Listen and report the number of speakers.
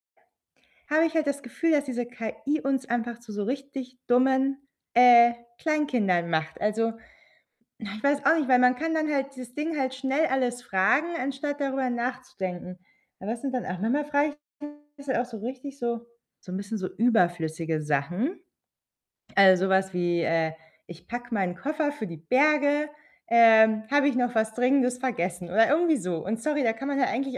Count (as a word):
one